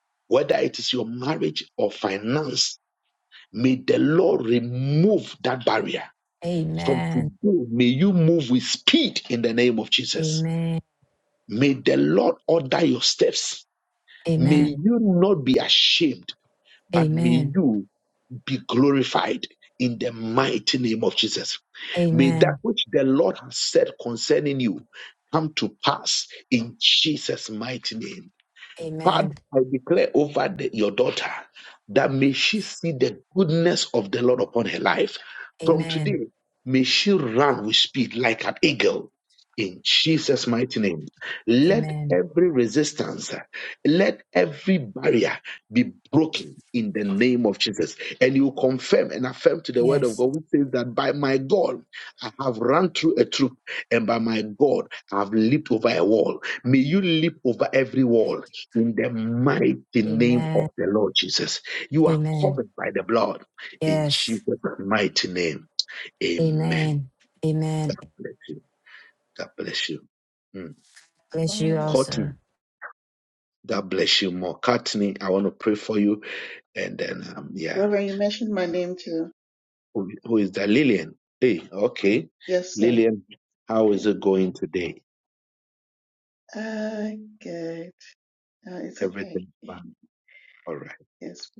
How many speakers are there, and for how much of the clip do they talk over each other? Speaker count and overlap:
3, about 9%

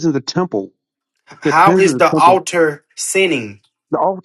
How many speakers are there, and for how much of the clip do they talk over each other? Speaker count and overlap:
2, about 22%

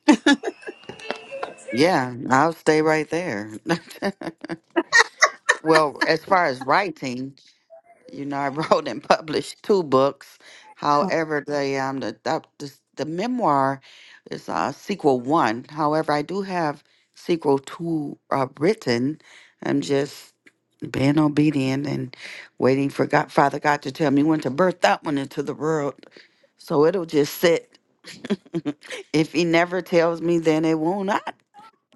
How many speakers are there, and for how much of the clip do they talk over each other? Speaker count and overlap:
1, no overlap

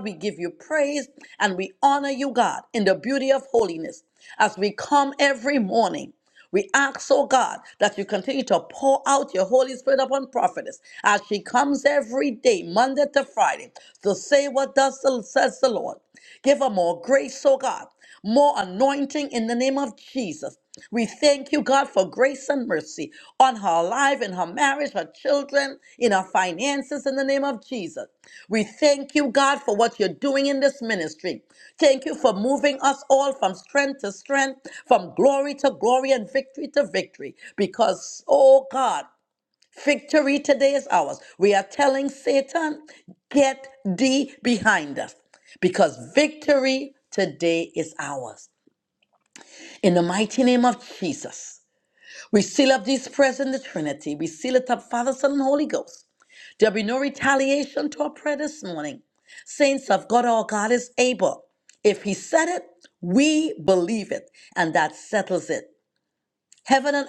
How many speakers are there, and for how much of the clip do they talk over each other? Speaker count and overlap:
1, no overlap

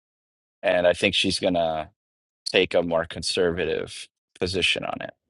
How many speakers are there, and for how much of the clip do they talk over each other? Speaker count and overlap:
1, no overlap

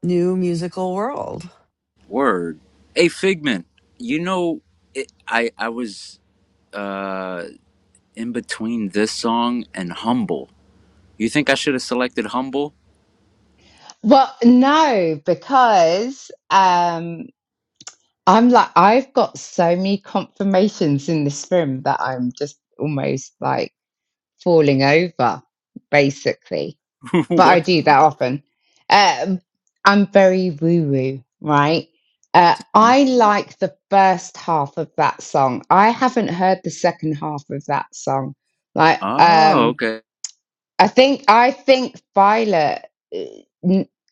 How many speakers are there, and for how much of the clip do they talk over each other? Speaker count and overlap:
3, about 2%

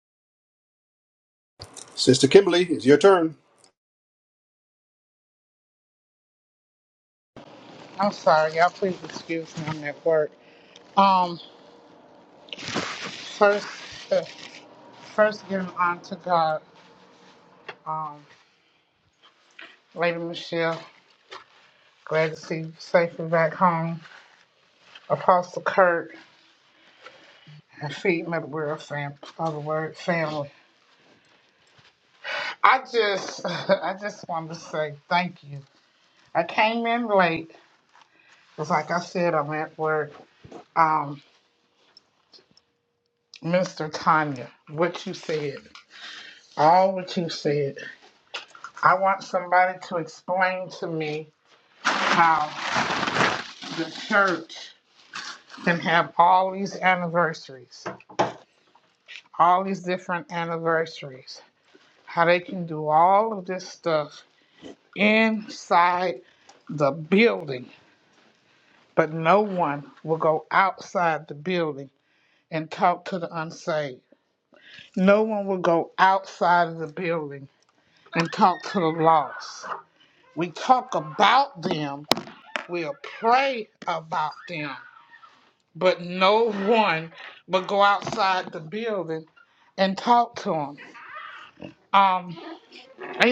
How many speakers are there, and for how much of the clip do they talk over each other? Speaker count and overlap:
2, no overlap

